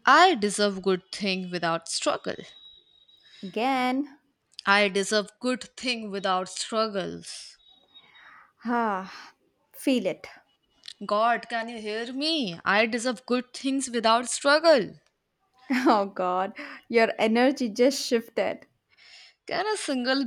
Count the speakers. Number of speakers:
two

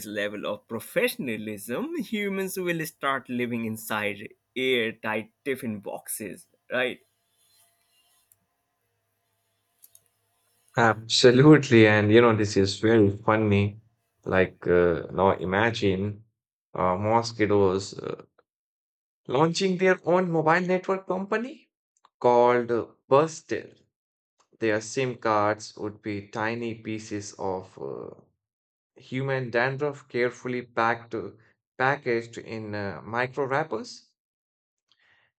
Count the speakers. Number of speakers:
two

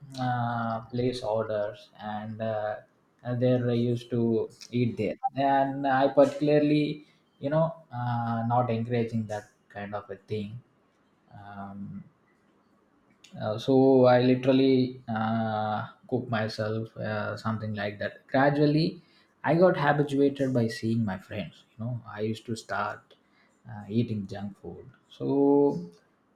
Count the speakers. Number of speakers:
one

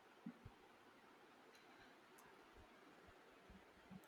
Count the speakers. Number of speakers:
zero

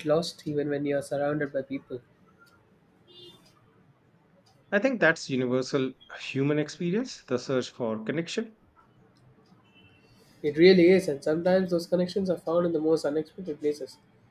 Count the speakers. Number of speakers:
two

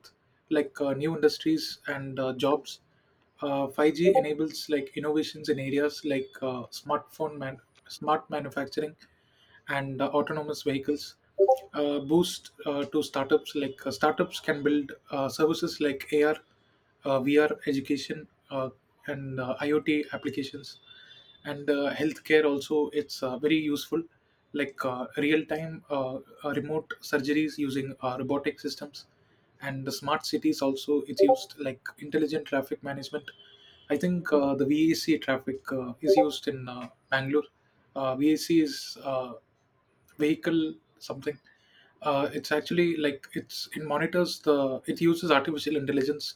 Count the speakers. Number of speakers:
one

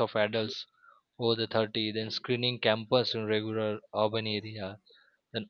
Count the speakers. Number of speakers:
one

